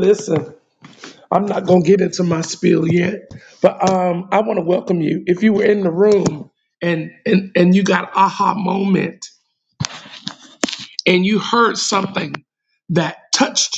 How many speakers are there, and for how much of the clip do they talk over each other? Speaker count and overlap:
1, no overlap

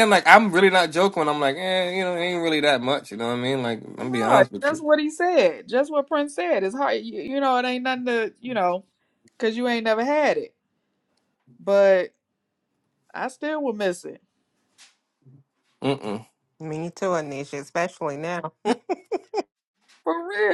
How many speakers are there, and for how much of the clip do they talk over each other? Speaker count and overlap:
3, about 4%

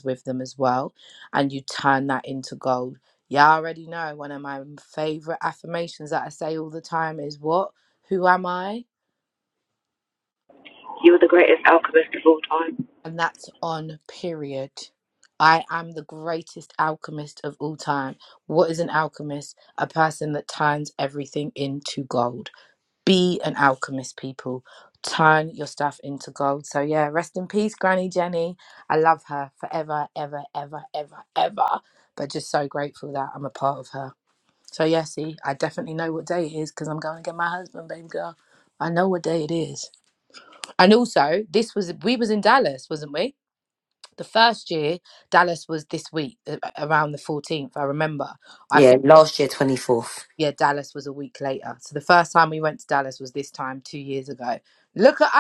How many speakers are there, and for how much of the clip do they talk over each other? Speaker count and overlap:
3, under 1%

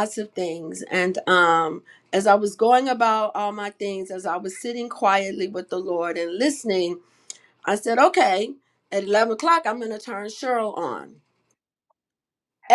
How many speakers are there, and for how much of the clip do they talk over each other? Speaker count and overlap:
1, no overlap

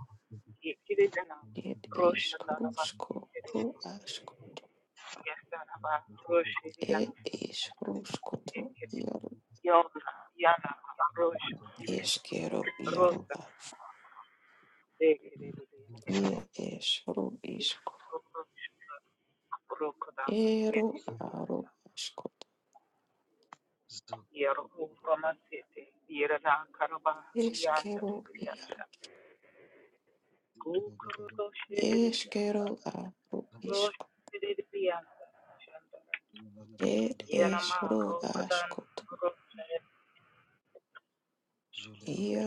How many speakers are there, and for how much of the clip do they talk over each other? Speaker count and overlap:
2, about 12%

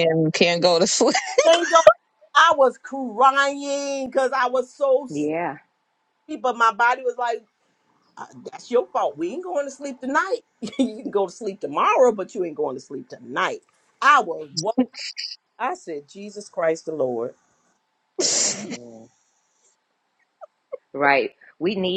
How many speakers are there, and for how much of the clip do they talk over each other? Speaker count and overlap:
3, no overlap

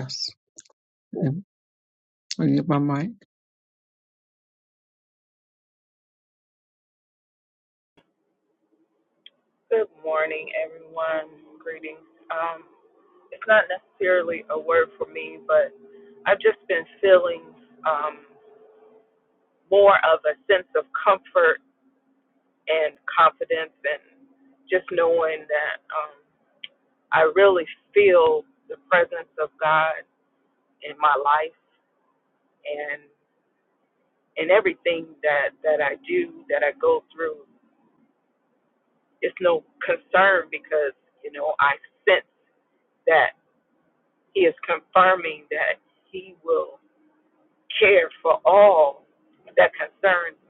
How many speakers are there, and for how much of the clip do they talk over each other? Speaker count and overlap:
2, no overlap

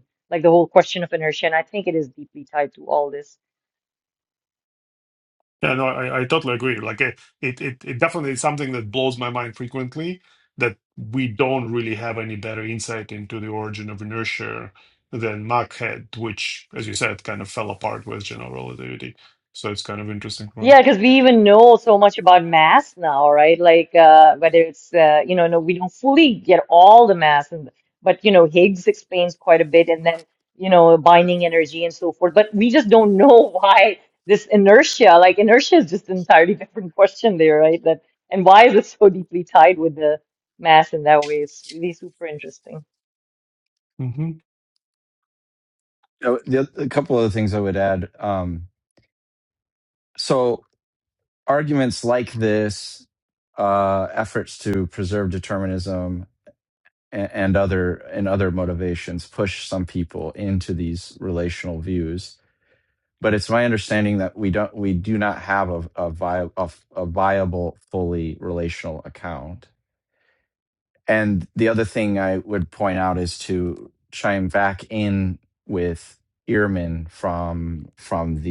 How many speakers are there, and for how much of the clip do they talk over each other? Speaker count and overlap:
3, no overlap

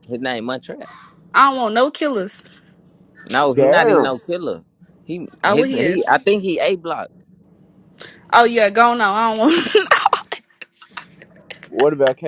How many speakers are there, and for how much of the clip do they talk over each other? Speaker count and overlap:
3, about 10%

